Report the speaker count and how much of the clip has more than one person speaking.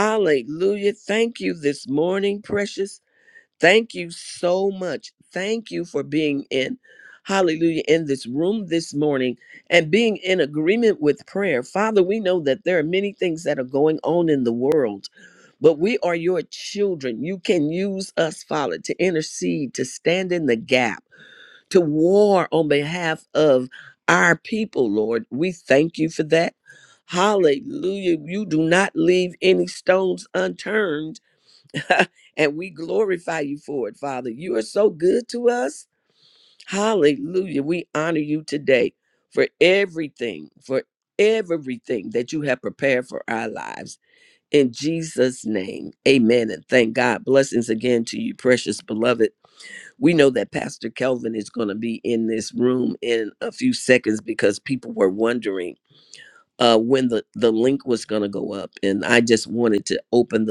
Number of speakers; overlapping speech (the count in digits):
1, no overlap